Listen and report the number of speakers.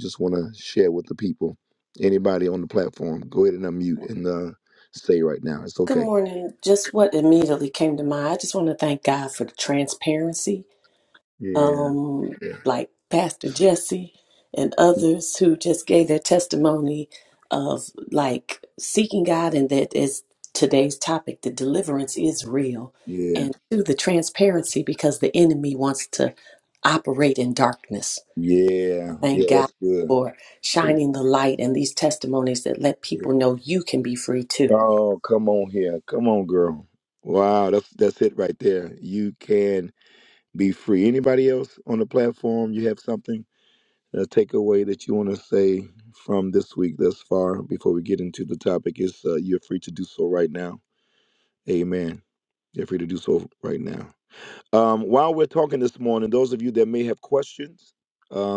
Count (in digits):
2